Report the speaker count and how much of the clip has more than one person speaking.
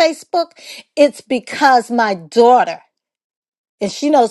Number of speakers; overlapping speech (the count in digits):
1, no overlap